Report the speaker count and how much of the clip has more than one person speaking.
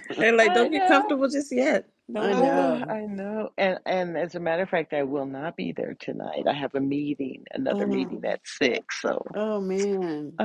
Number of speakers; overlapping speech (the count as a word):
three, about 19%